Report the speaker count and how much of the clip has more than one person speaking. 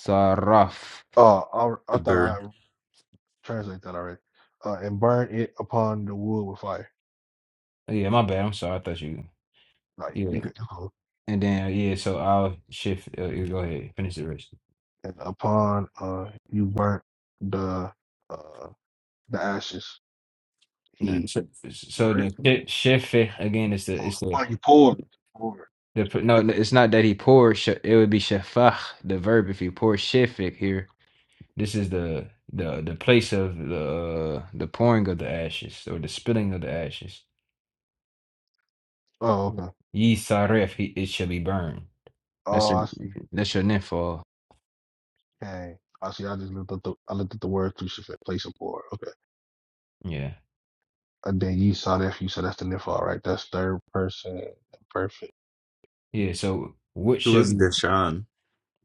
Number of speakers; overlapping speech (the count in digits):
3, about 4%